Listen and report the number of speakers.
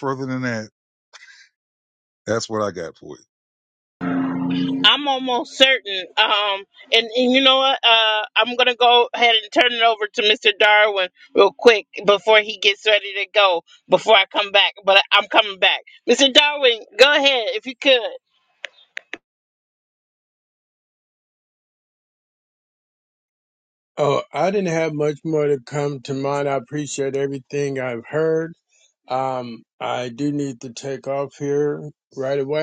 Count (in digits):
3